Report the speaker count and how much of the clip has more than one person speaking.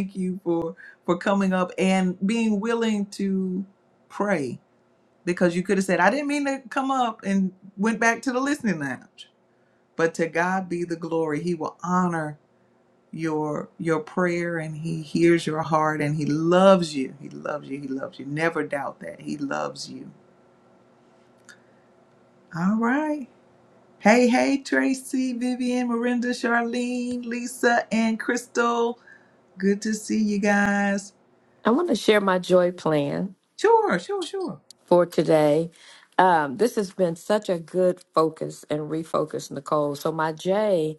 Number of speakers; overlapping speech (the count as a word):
two, no overlap